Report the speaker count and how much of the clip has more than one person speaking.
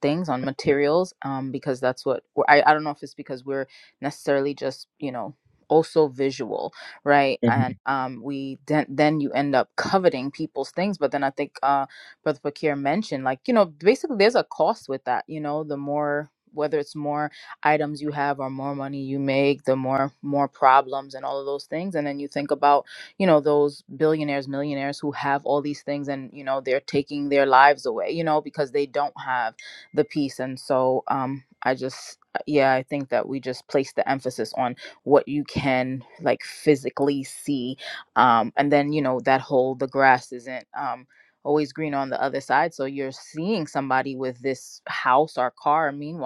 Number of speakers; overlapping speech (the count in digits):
1, no overlap